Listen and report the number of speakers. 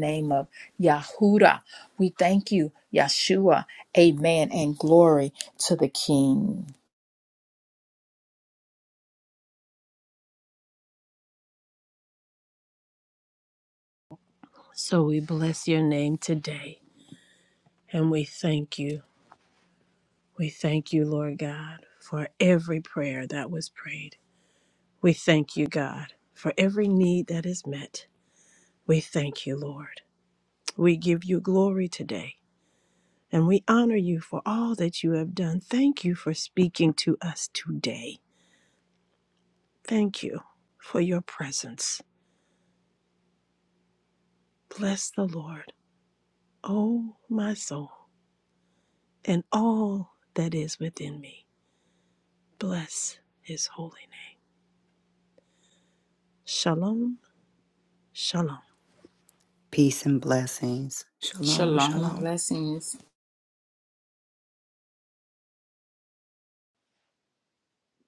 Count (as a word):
three